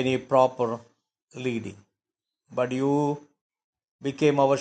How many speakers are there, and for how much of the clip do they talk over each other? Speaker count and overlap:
one, no overlap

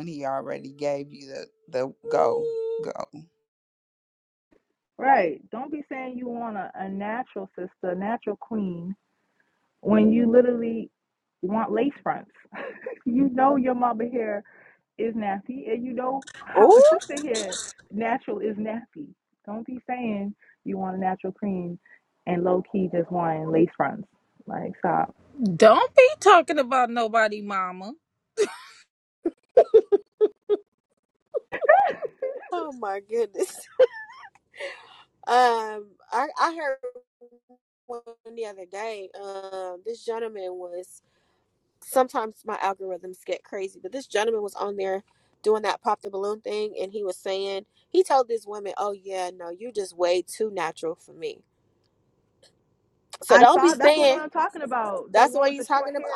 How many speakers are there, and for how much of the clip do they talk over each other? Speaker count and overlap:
four, about 5%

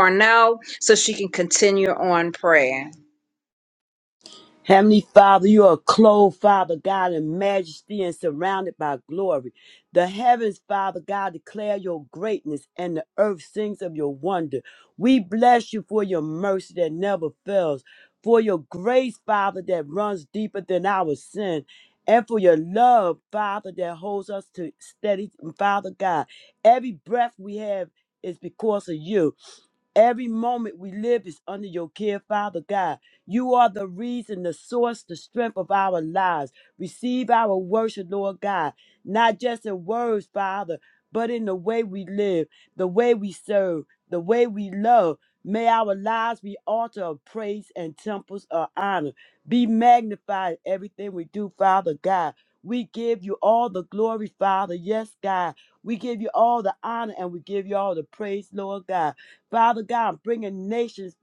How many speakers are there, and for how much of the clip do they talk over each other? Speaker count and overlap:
two, no overlap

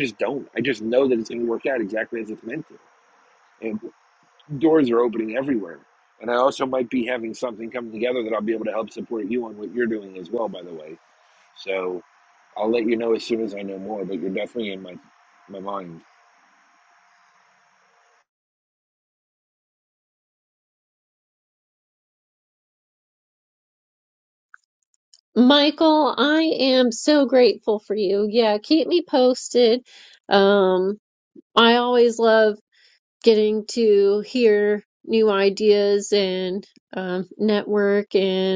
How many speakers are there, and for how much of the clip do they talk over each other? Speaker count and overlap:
two, no overlap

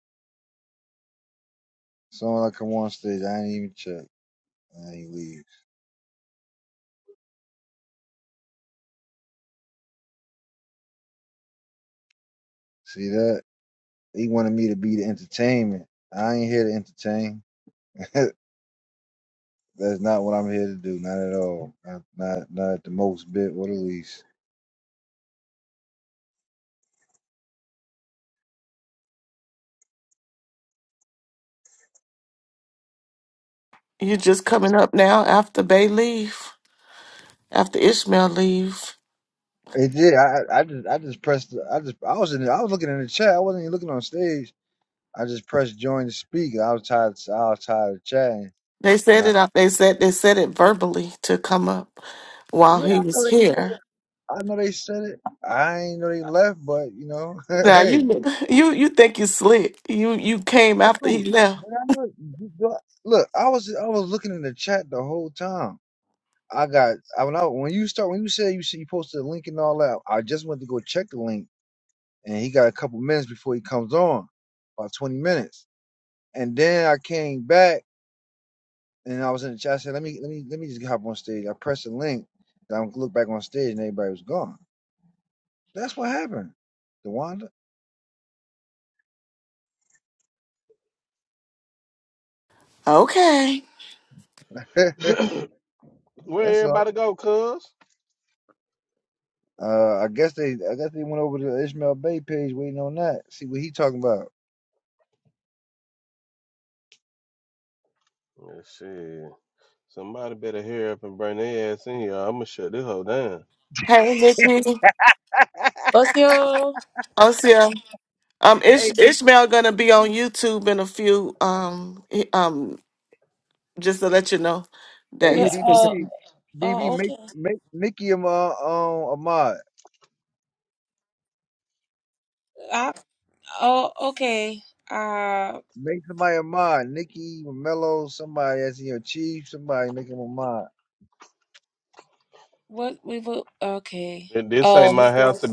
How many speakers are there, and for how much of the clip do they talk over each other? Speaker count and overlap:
four, about 3%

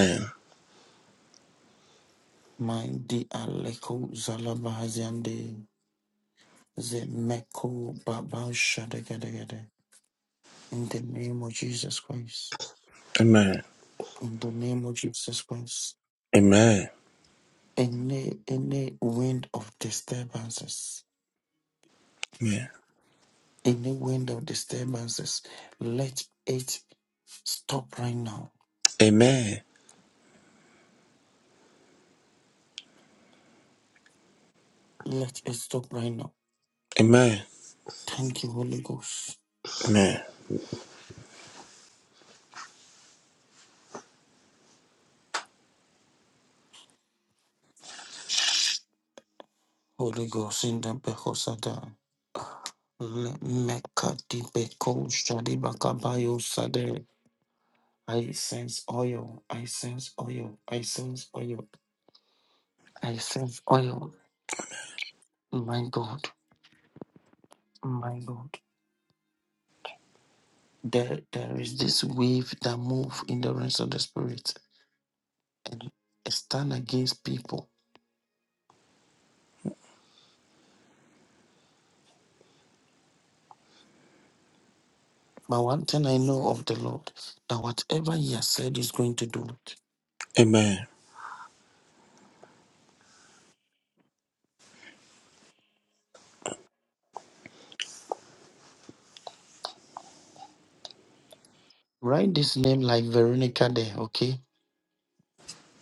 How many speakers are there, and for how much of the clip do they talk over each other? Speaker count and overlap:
two, no overlap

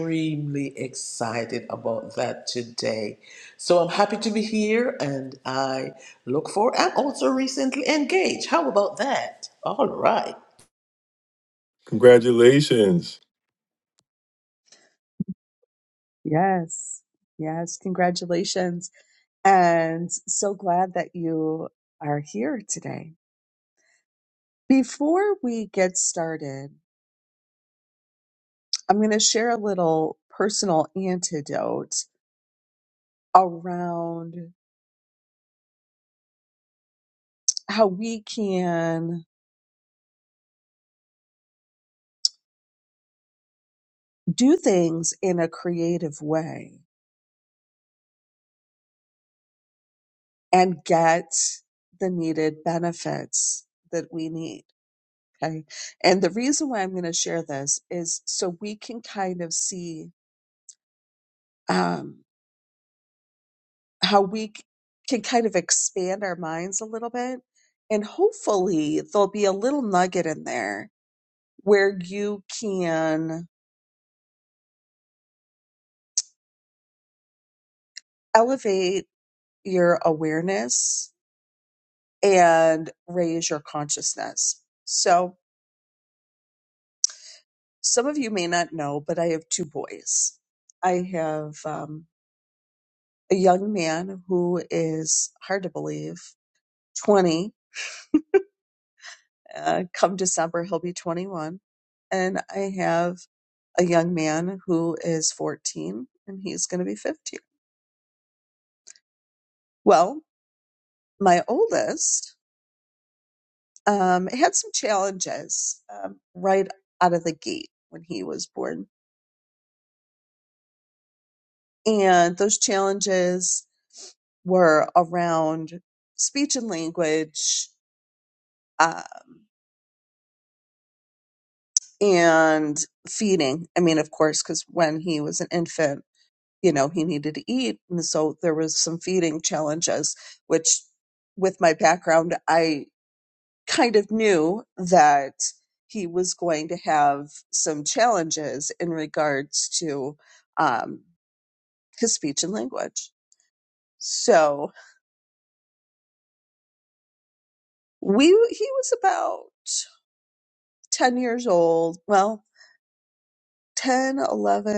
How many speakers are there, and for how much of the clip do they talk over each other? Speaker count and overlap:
three, no overlap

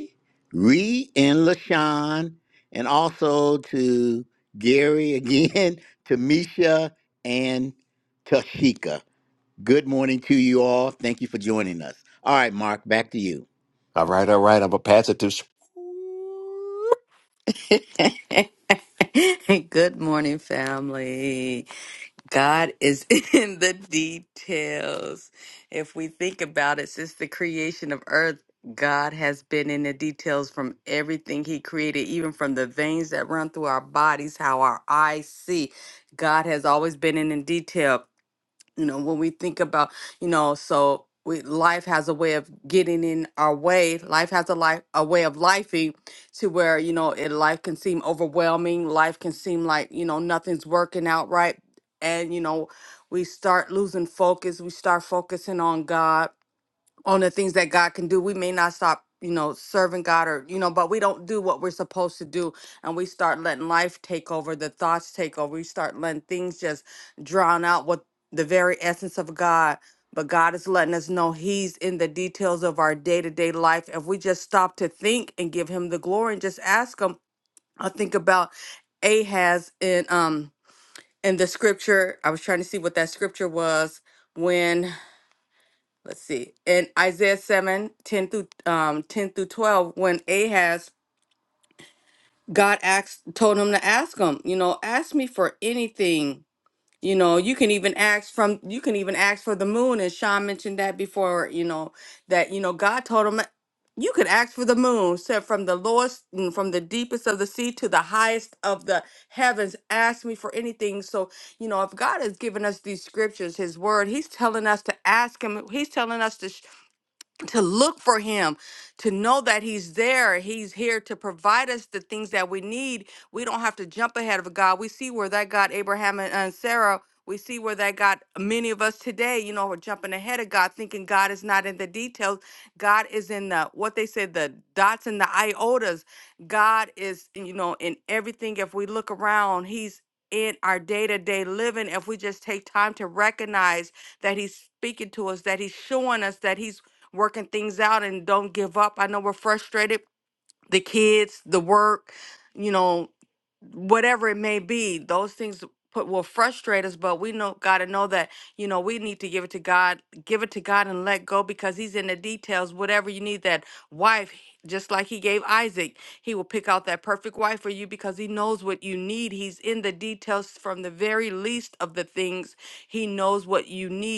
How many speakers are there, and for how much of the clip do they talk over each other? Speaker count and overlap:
three, no overlap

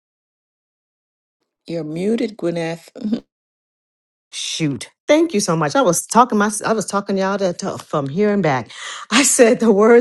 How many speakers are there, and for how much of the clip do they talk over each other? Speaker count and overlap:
two, no overlap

